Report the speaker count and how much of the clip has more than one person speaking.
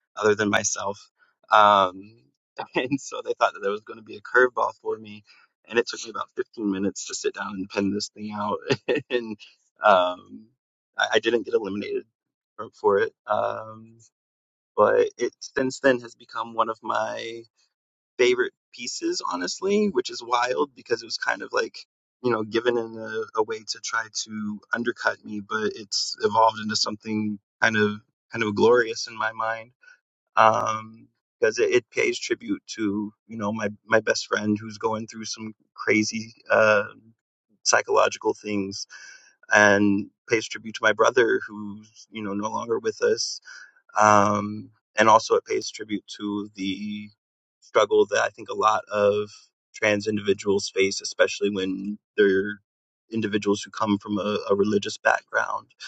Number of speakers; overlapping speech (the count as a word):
one, no overlap